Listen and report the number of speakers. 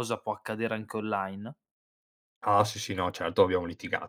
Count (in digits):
2